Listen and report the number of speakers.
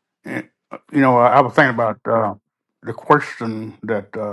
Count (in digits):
1